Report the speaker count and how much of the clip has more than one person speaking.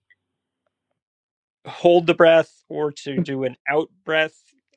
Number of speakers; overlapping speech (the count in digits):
1, no overlap